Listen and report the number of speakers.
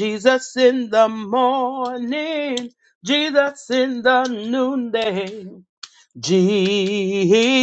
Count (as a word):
one